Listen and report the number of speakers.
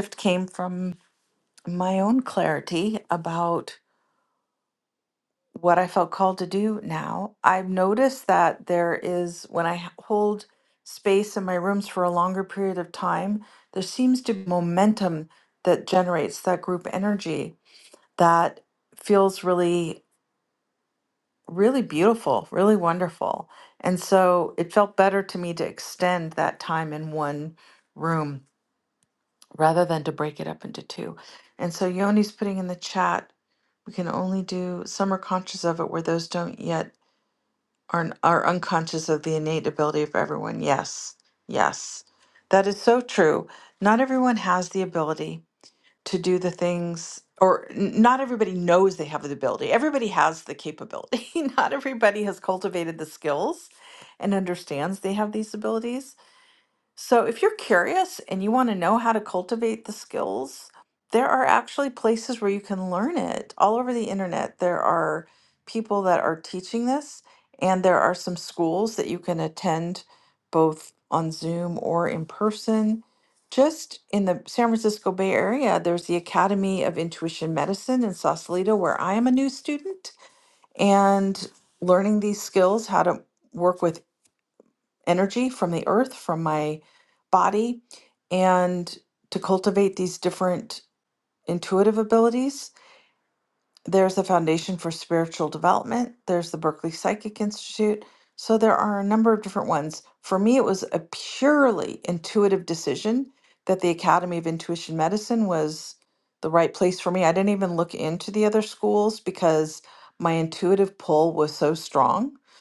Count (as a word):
one